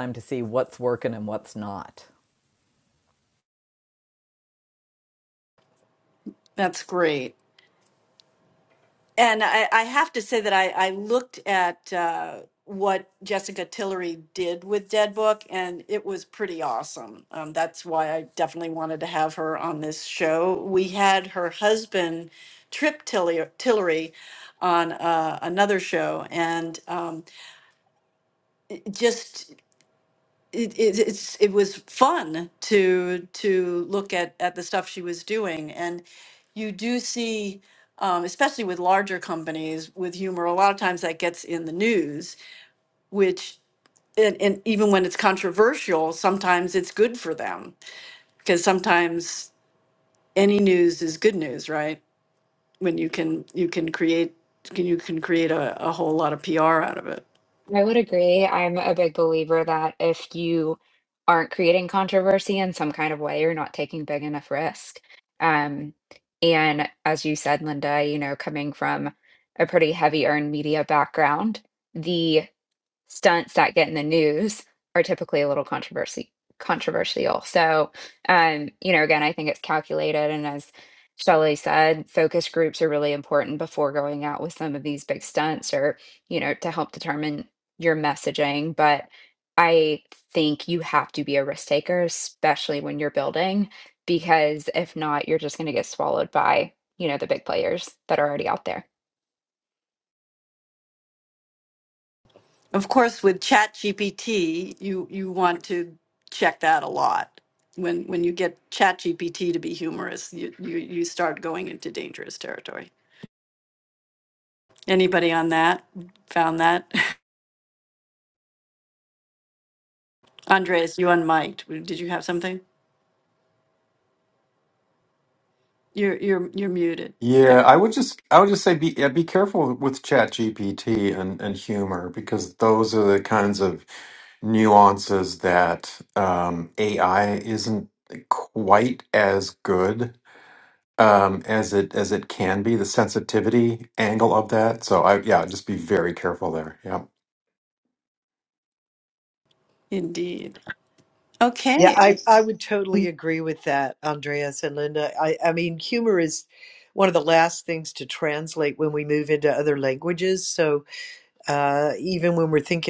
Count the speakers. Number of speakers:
5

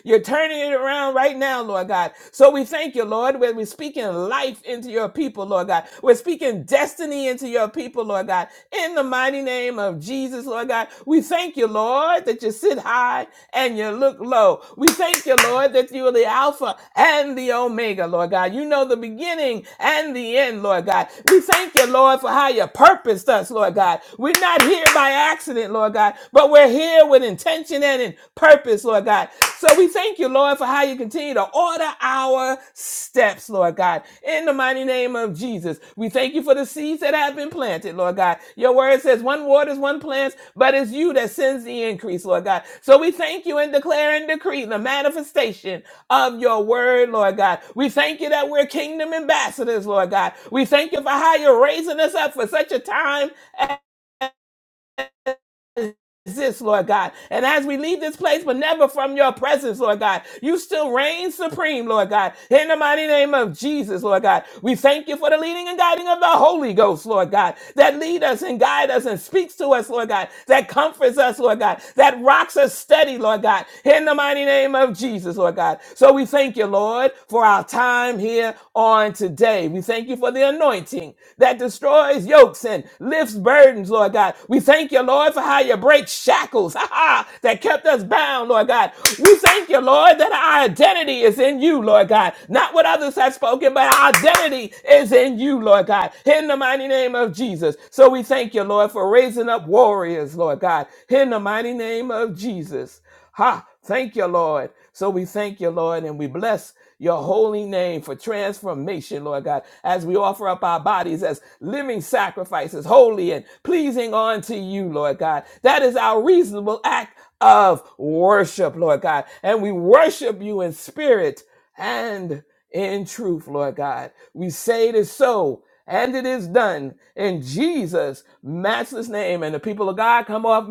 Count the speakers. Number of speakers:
1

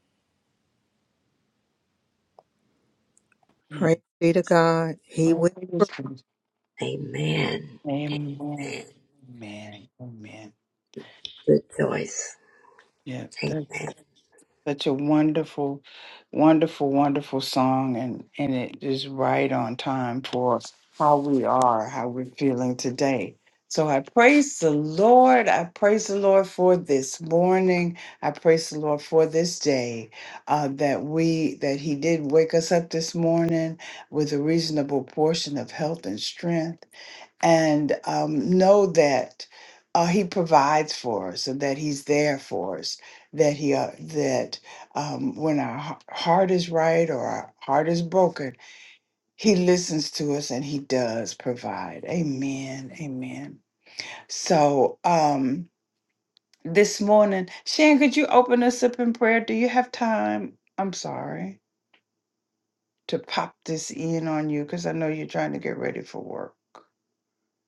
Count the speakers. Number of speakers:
3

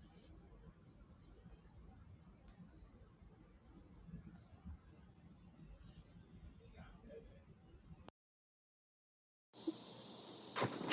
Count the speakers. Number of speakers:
0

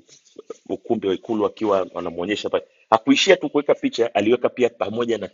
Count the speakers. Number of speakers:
1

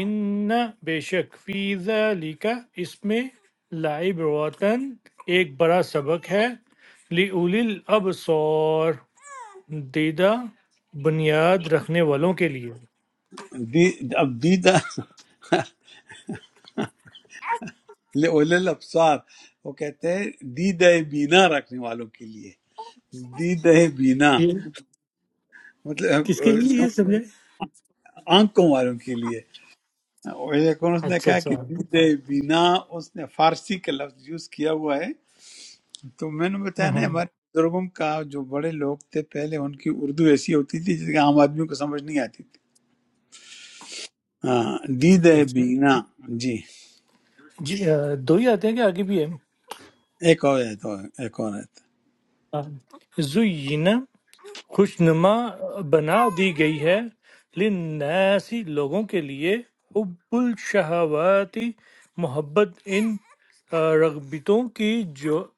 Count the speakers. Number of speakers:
2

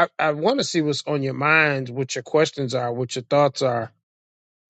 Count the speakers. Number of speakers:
1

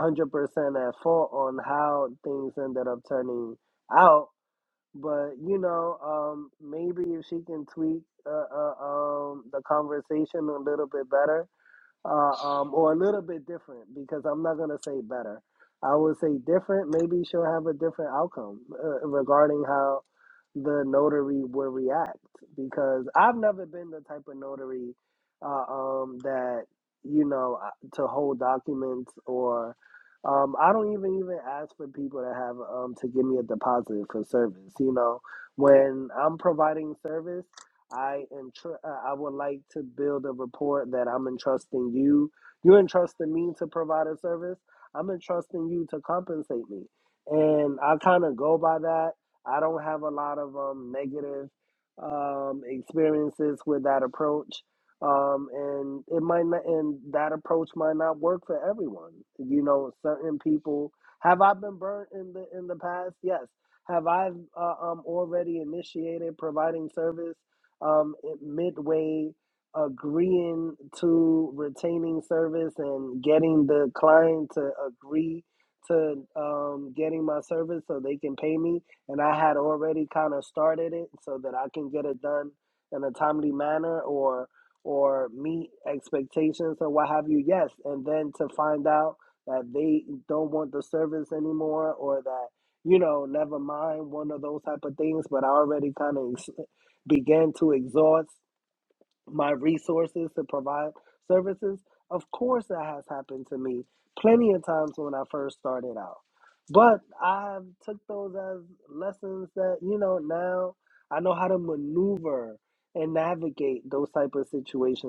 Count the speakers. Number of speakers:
1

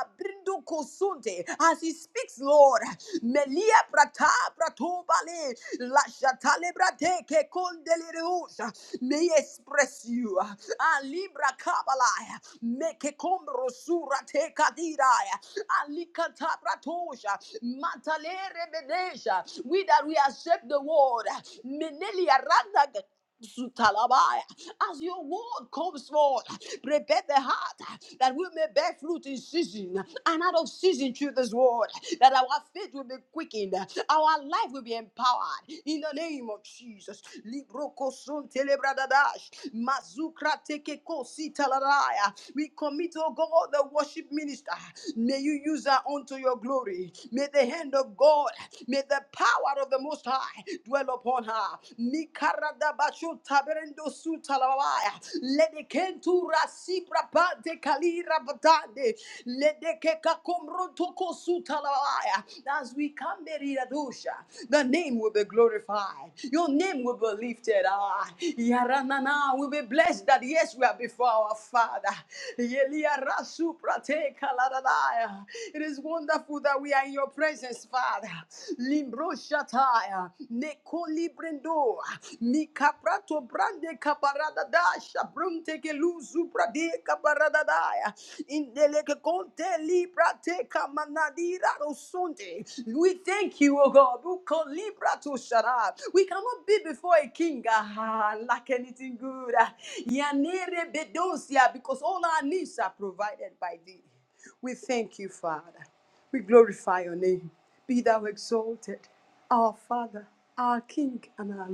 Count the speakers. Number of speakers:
1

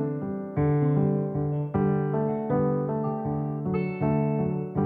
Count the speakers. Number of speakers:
0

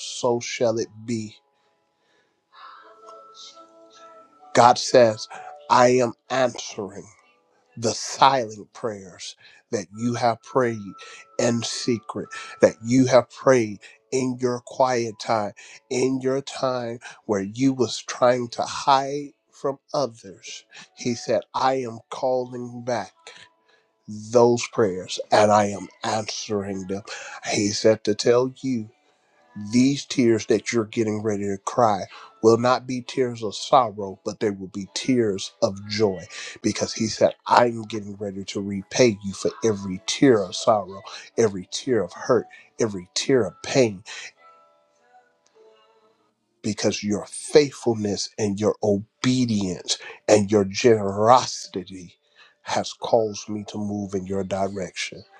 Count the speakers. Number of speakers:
1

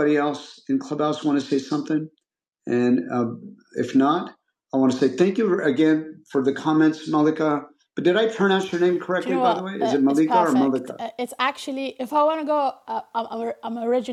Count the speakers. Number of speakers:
2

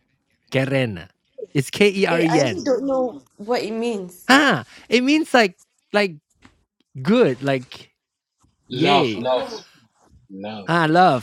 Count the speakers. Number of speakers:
3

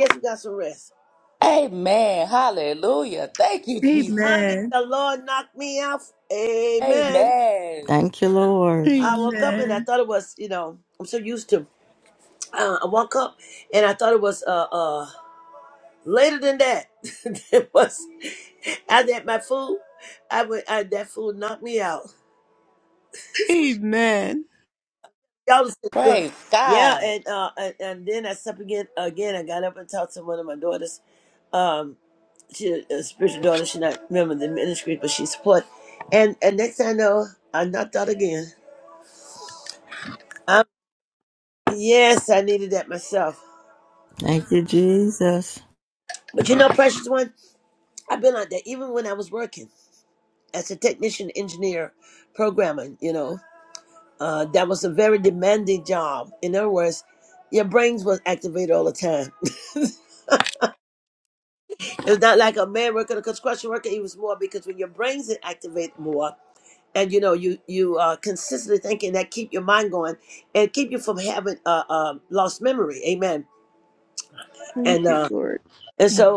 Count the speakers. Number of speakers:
4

